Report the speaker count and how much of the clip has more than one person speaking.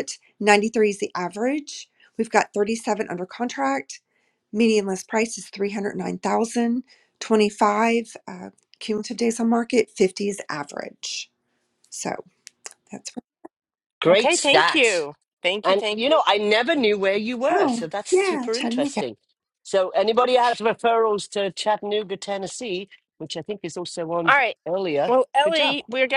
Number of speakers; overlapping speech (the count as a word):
three, about 13%